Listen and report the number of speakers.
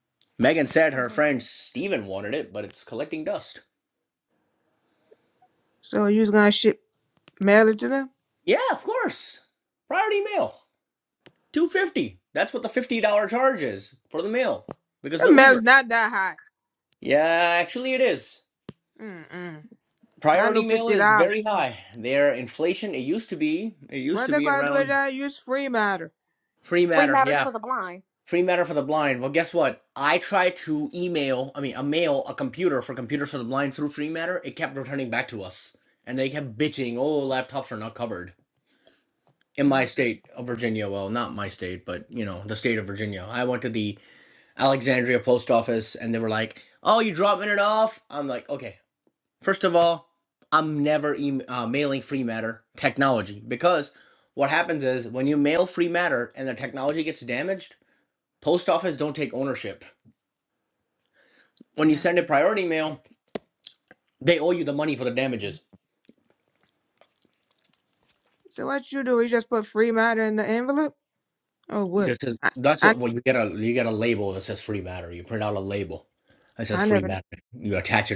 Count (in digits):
3